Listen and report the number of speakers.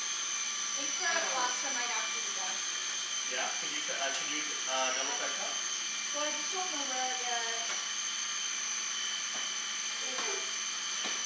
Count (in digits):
2